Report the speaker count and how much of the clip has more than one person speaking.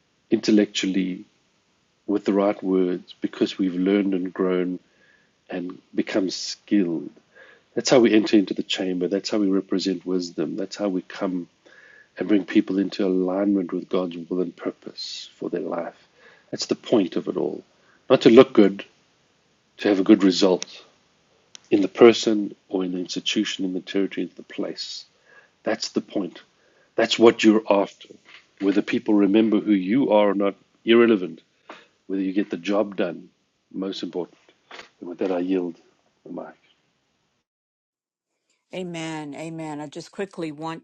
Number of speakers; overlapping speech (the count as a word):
two, no overlap